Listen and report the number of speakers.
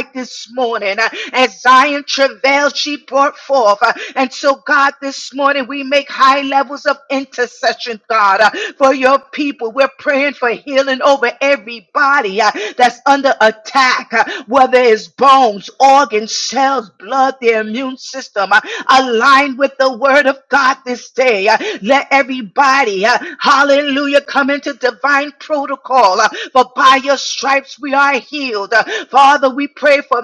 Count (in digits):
1